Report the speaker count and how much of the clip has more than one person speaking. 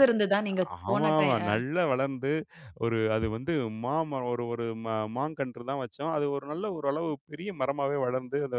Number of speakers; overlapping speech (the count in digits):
2, about 8%